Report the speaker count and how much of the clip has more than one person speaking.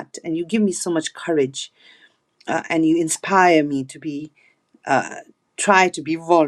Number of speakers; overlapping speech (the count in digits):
1, no overlap